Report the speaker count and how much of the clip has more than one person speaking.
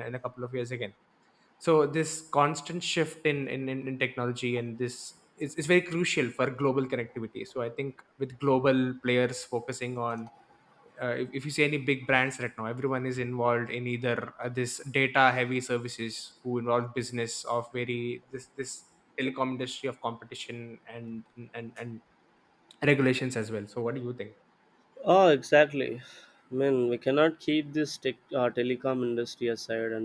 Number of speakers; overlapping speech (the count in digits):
2, no overlap